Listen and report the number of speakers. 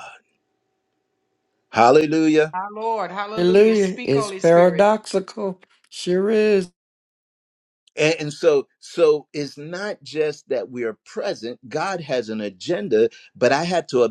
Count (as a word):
three